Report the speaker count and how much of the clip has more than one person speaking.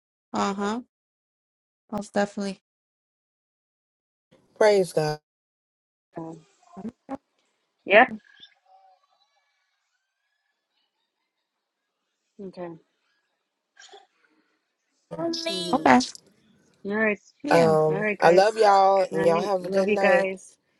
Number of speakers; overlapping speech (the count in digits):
3, about 11%